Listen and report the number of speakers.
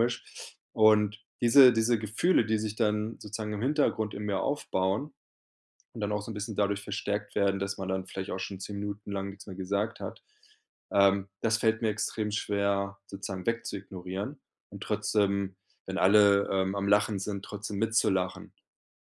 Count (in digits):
1